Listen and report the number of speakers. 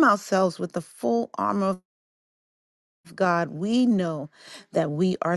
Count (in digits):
1